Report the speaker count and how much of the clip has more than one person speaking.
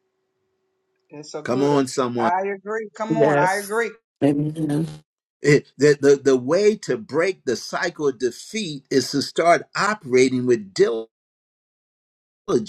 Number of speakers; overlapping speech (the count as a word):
three, about 6%